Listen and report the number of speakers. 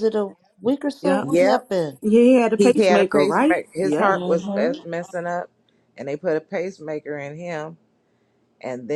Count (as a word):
three